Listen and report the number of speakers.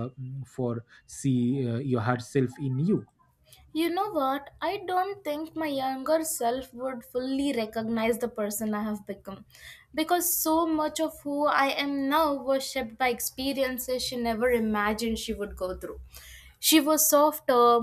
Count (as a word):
two